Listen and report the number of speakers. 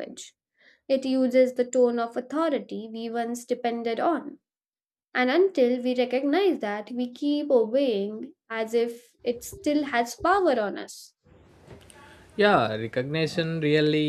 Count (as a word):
two